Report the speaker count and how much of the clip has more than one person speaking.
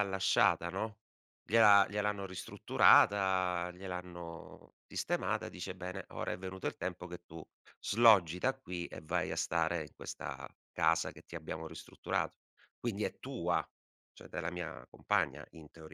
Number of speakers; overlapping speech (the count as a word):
one, no overlap